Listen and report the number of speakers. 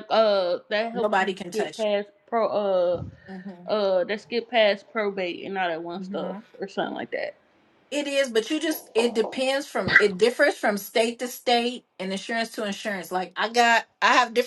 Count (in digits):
2